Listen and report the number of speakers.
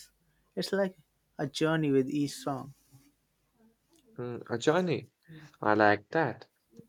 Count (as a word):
two